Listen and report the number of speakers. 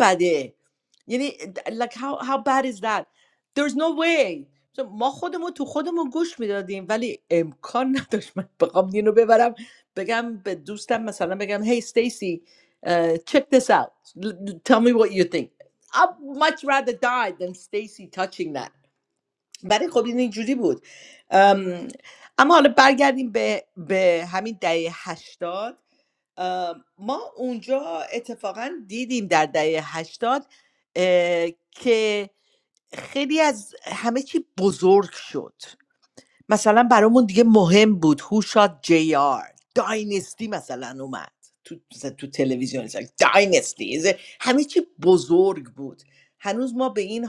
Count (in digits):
1